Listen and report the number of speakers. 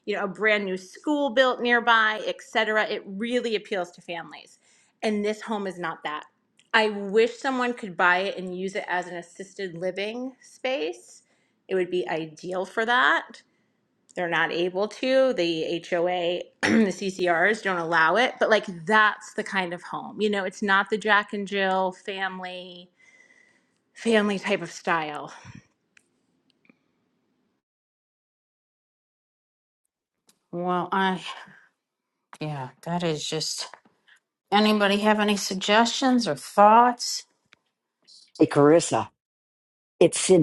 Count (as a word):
three